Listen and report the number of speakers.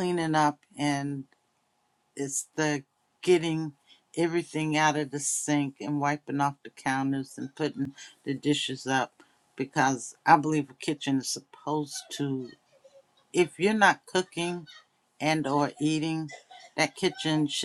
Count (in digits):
1